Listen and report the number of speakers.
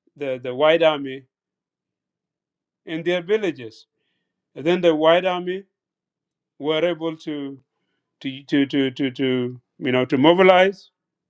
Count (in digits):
1